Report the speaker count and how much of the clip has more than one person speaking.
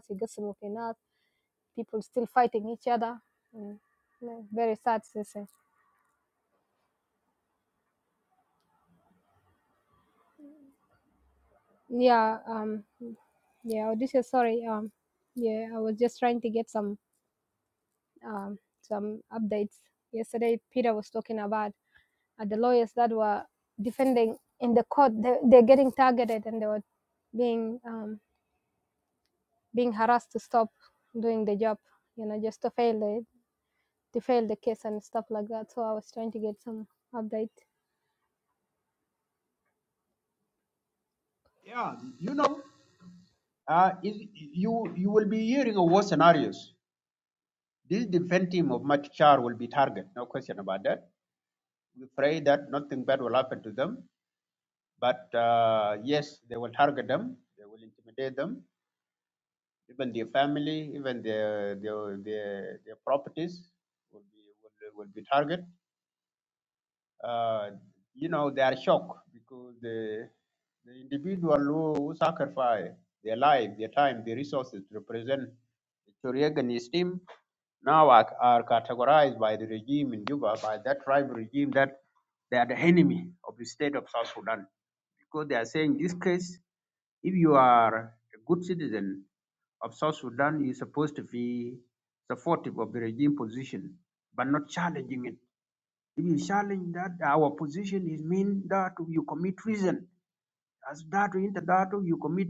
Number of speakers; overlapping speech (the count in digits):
2, no overlap